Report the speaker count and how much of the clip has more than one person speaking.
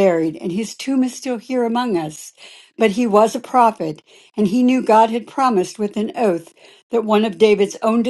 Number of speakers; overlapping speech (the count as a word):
one, no overlap